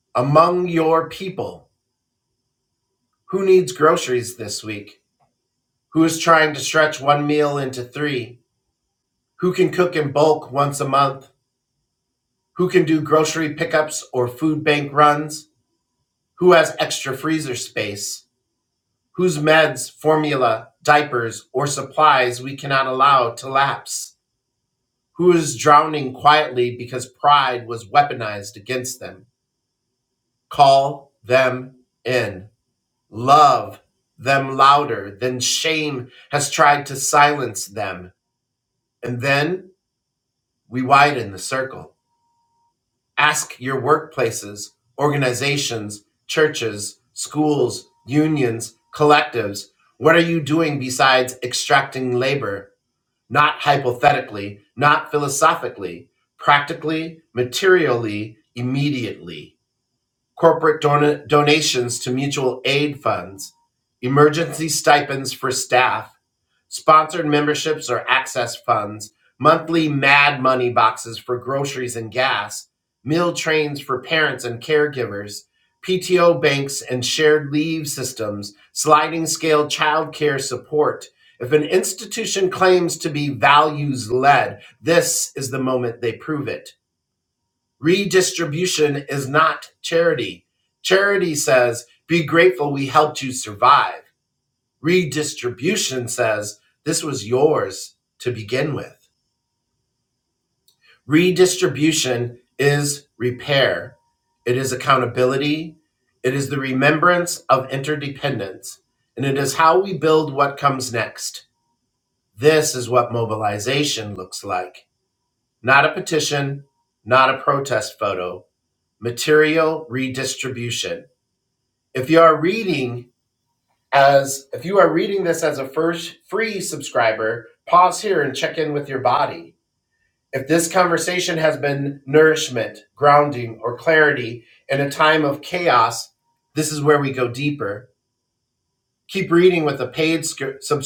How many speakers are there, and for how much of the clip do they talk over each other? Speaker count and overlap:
1, no overlap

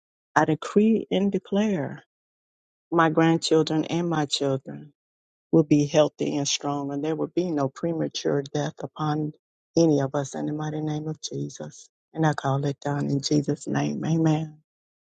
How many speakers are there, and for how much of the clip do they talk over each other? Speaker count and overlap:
1, no overlap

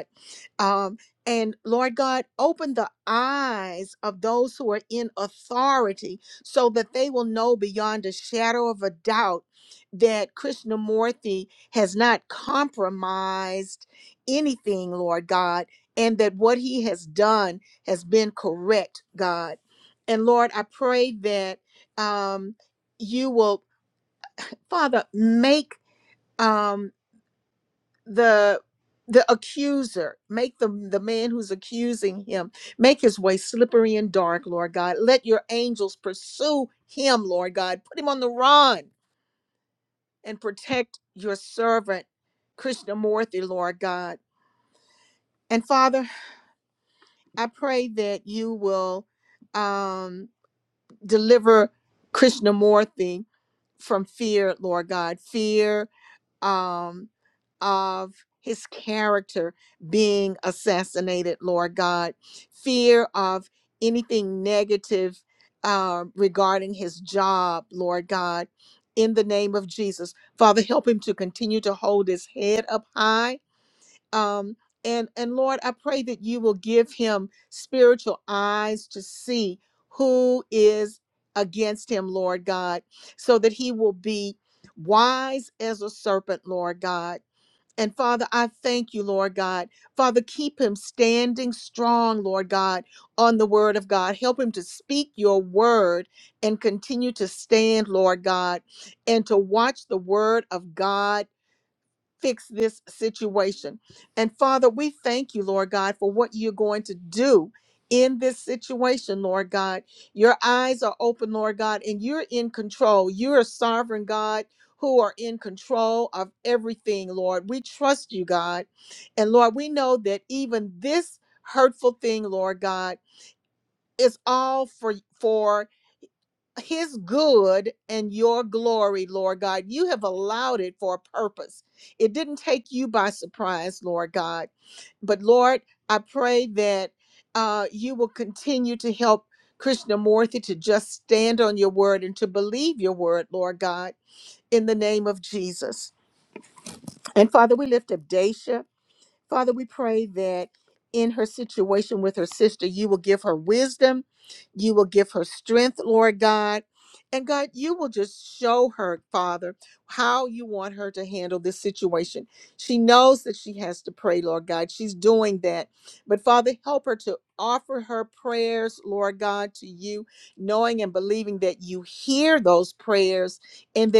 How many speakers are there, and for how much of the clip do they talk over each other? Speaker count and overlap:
1, no overlap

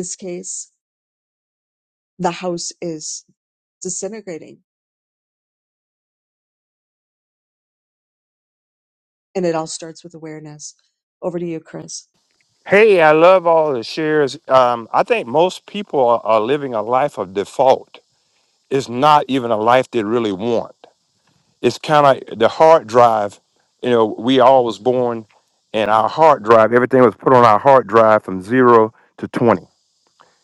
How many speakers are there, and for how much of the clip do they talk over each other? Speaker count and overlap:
2, no overlap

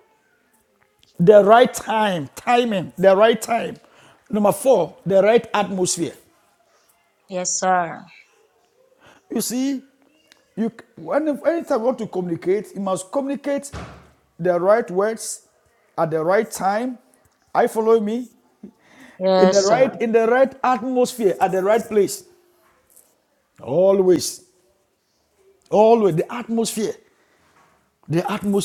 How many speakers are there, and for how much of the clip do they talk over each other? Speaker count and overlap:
2, about 2%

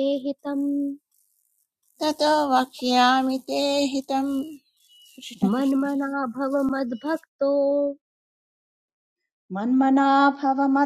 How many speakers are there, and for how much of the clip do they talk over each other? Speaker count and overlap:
3, about 2%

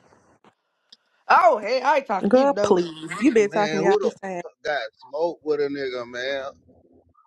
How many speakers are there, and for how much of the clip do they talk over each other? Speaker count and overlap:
3, about 24%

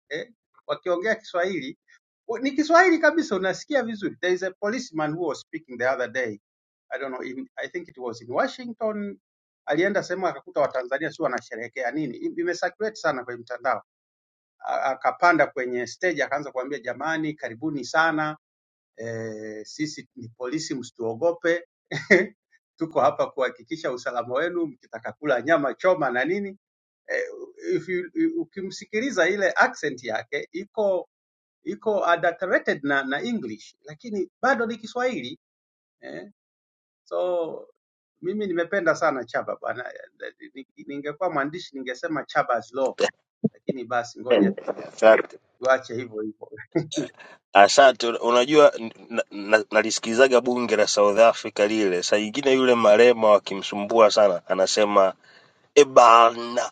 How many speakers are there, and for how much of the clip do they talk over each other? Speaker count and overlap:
2, no overlap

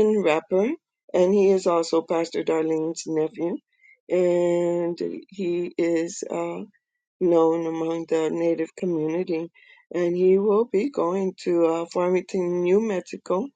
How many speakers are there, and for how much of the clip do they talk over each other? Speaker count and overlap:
1, no overlap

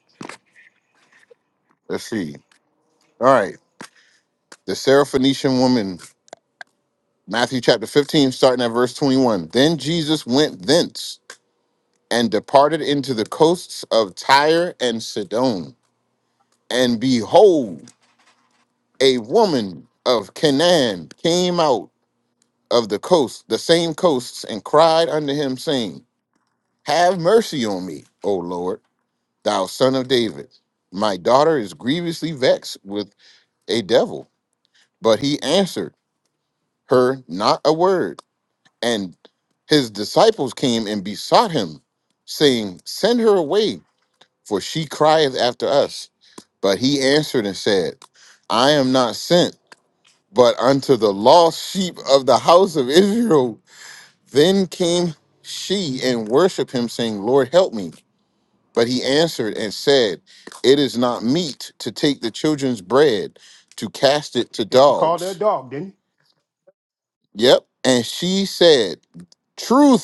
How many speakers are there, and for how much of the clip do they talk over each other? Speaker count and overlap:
2, about 1%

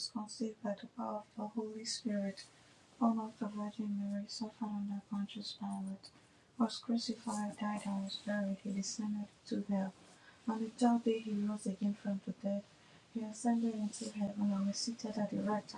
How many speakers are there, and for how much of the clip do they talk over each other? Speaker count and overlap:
1, no overlap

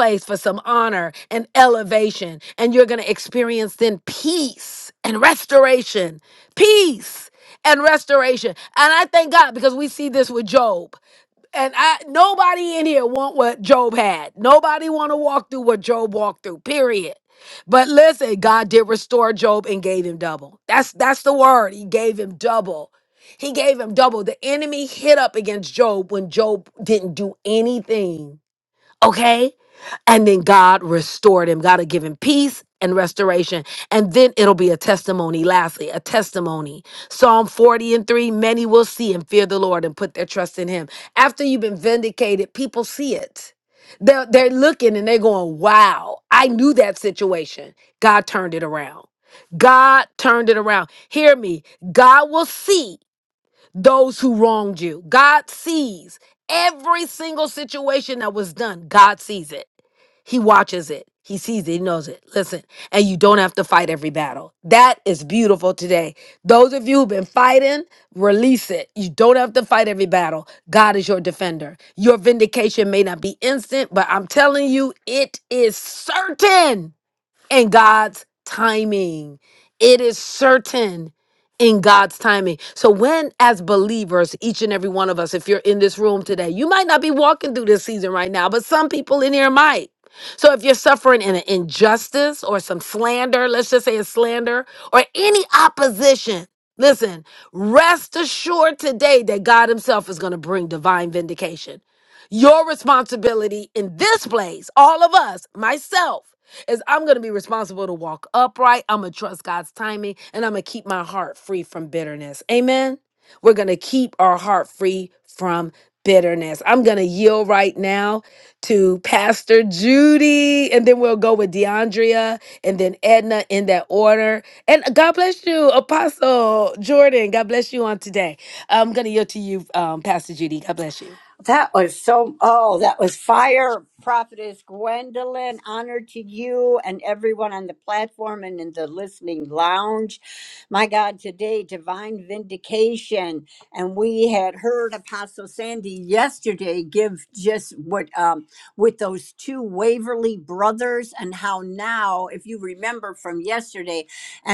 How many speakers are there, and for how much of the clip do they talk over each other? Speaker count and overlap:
2, no overlap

